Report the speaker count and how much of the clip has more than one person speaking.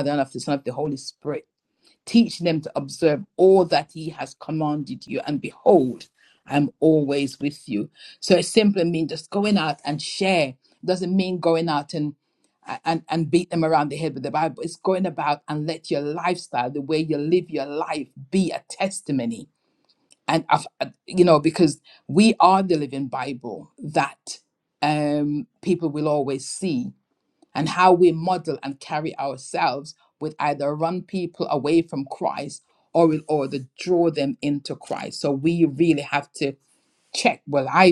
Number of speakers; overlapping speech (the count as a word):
one, no overlap